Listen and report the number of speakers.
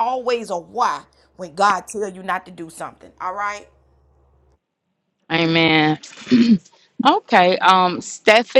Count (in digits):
2